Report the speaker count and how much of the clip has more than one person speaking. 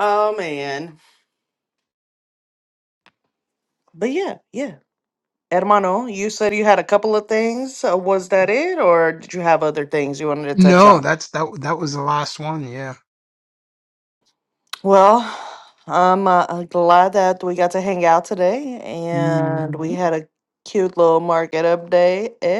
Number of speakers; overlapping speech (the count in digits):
2, about 6%